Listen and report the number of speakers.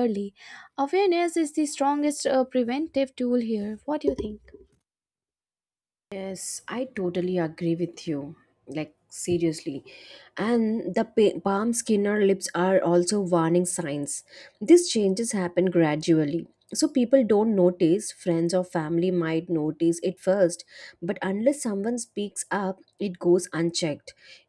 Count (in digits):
2